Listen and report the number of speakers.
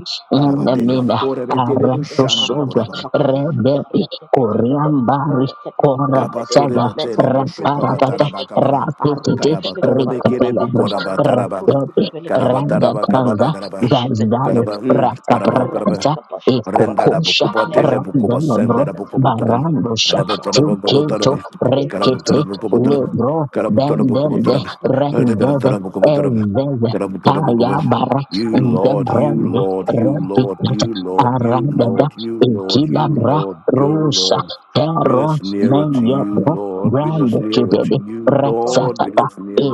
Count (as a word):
three